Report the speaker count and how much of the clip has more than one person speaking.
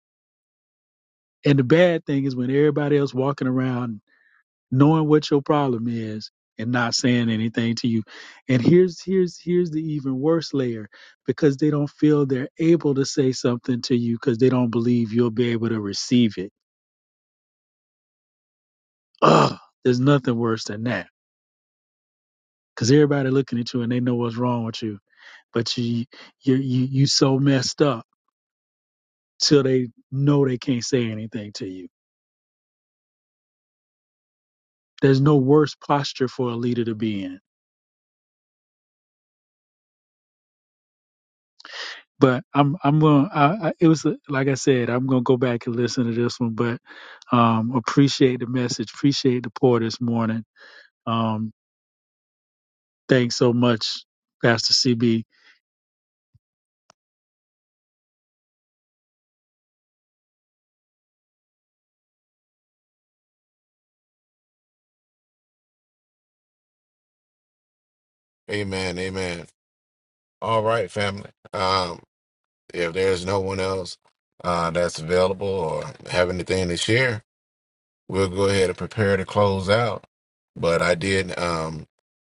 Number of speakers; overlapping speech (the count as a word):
two, no overlap